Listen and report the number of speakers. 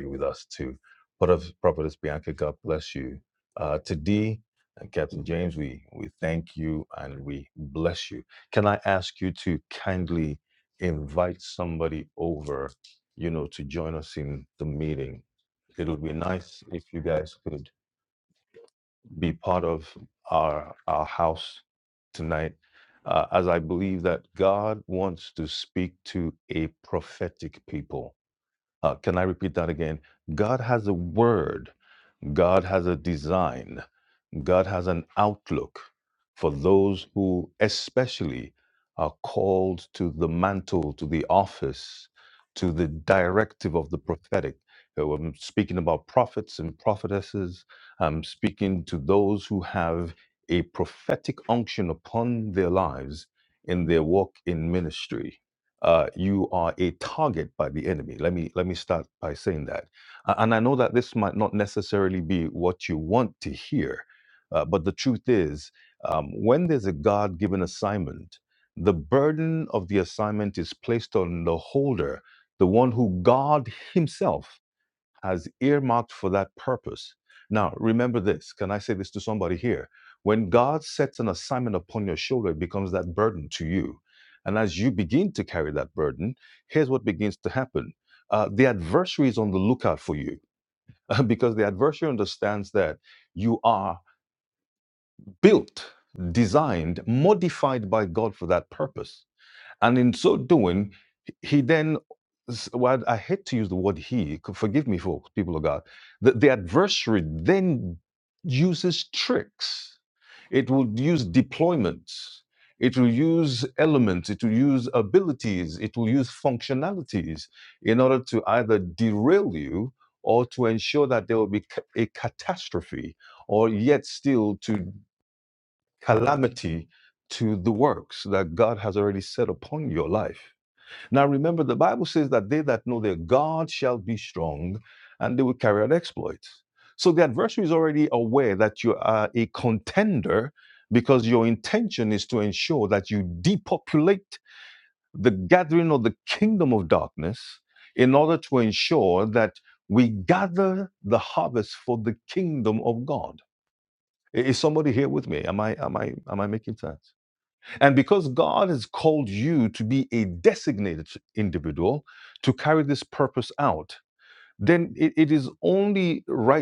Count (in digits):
1